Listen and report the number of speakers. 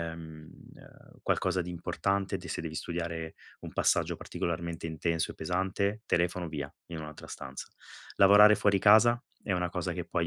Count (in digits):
1